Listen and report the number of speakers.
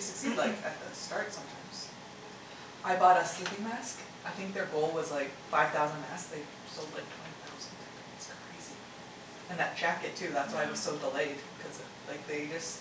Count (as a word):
one